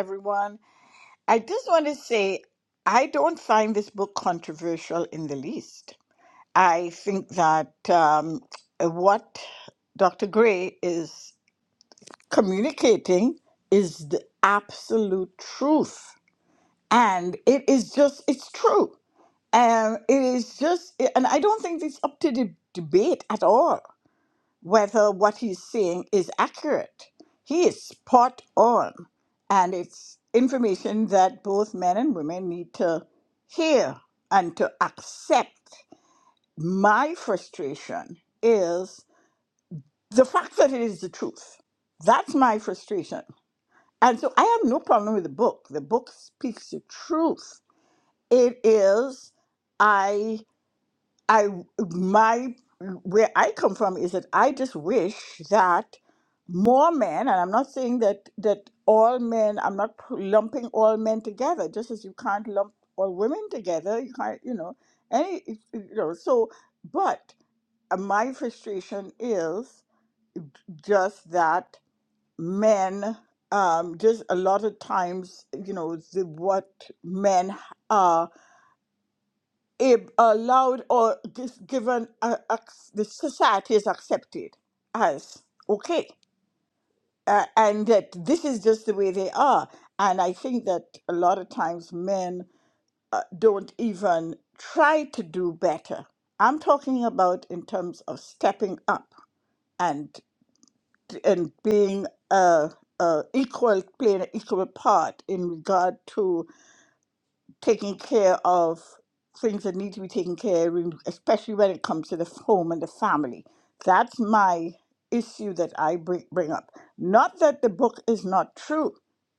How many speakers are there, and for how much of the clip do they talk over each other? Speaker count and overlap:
one, no overlap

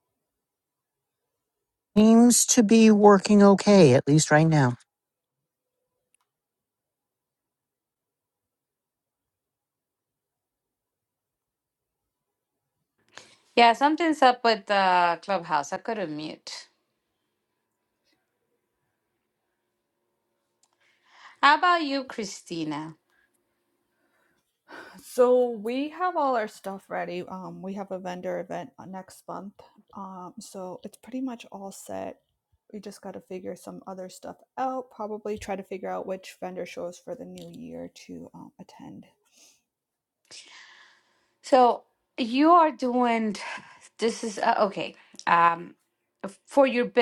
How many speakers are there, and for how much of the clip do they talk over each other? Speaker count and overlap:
three, no overlap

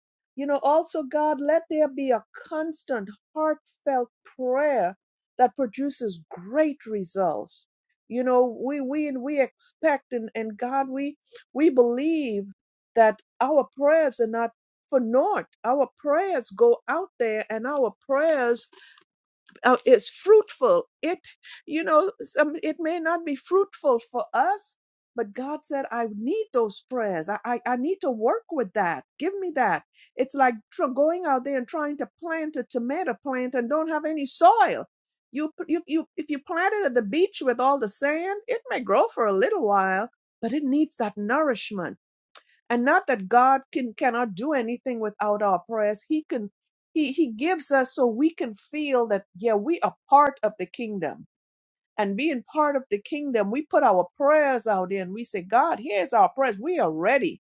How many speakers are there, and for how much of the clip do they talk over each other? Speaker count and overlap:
one, no overlap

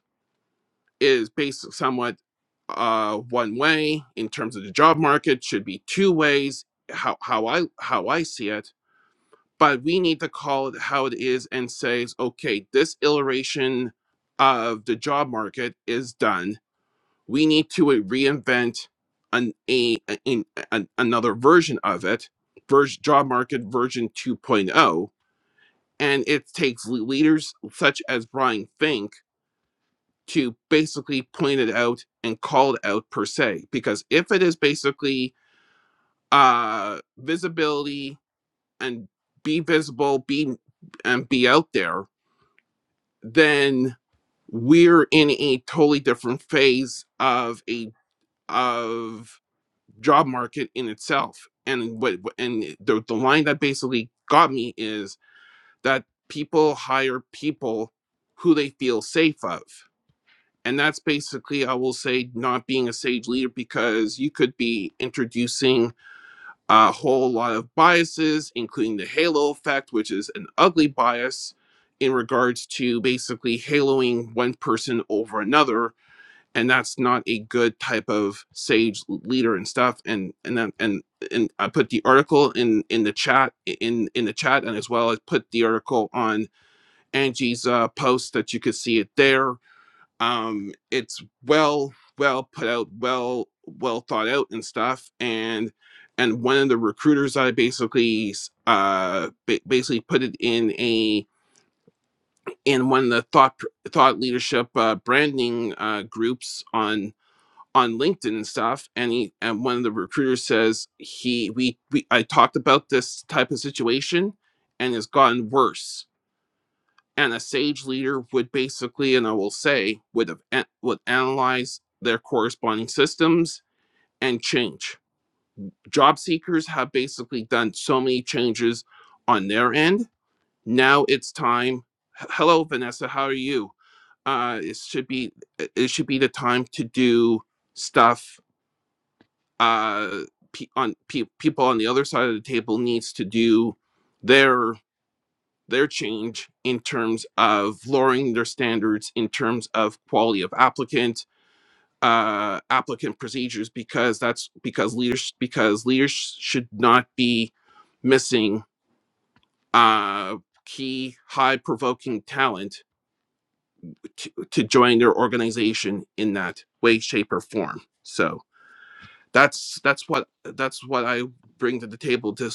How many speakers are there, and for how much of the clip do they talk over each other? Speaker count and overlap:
one, no overlap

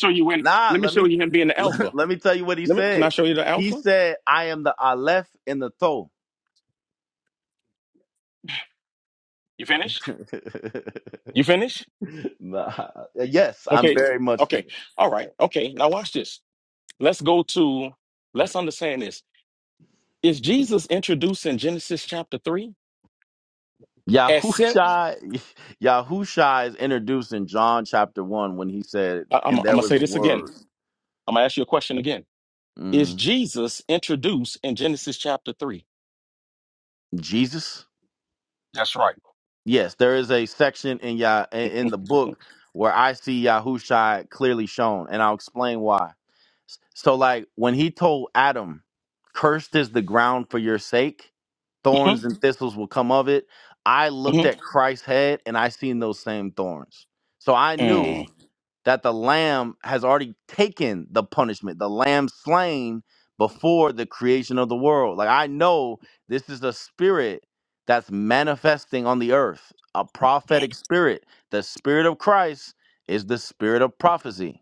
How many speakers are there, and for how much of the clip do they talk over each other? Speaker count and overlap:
two, about 6%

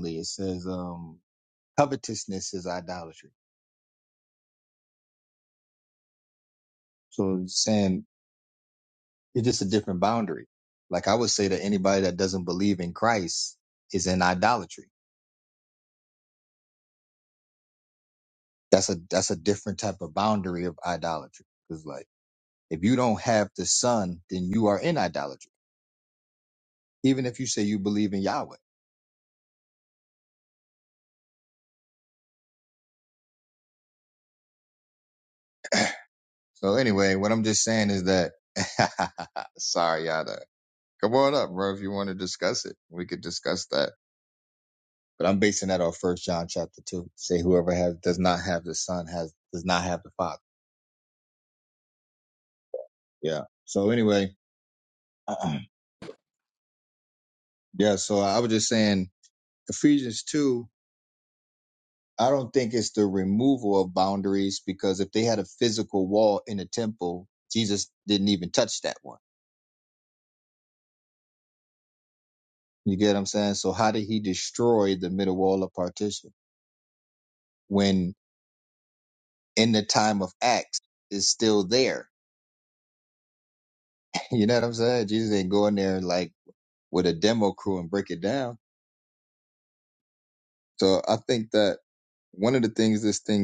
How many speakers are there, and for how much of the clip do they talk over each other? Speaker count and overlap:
one, no overlap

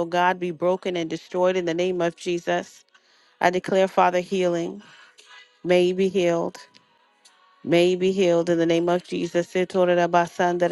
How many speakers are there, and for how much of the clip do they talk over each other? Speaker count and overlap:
one, no overlap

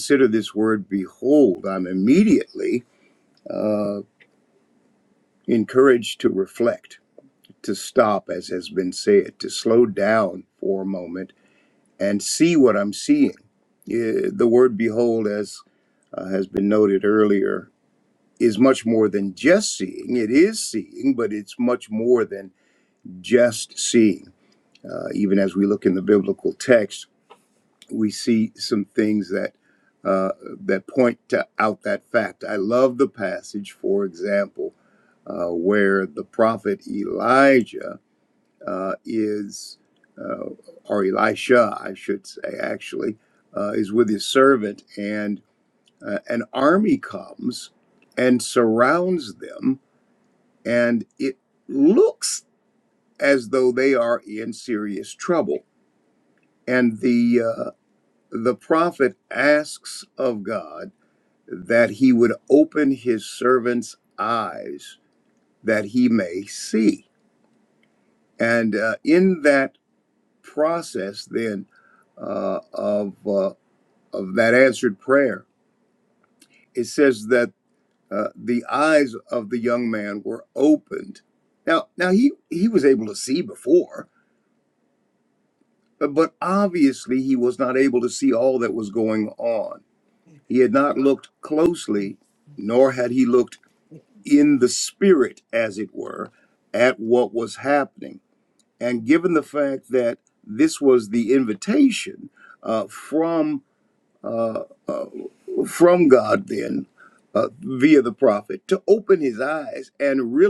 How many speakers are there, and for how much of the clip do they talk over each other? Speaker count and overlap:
one, no overlap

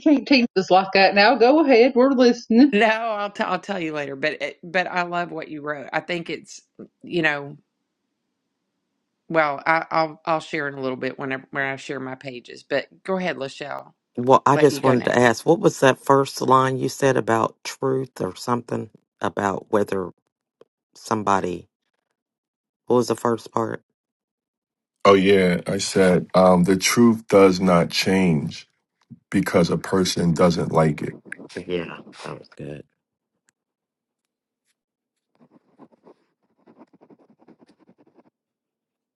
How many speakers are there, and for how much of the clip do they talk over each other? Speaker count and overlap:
four, about 2%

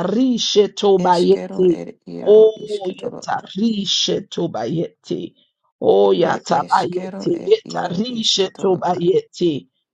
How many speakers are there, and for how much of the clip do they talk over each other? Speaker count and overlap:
two, about 44%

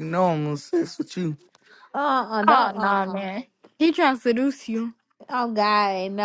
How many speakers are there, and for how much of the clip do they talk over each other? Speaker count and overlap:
three, about 12%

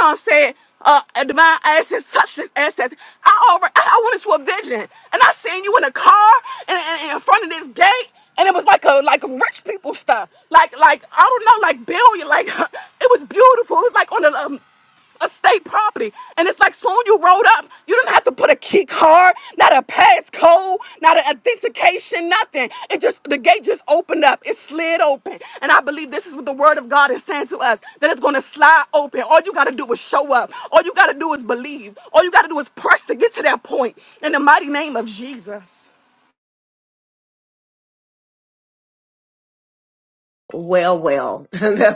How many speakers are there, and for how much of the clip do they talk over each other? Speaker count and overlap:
two, no overlap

